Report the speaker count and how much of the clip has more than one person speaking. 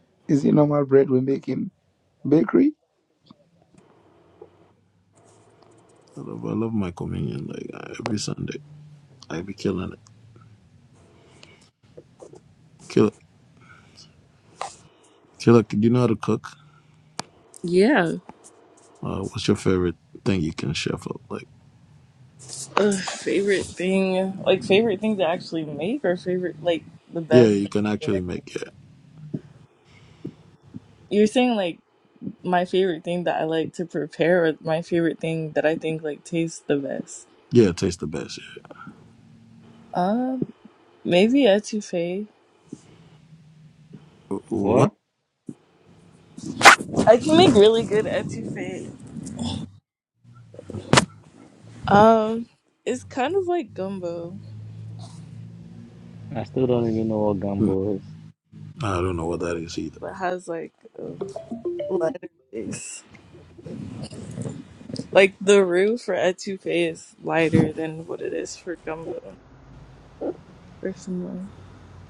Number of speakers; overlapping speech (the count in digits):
4, about 1%